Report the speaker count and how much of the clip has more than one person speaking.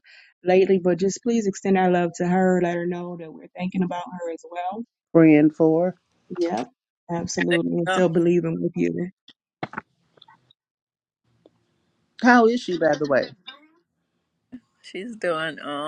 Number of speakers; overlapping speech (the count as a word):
three, about 1%